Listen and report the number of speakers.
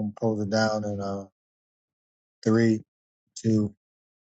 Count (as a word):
one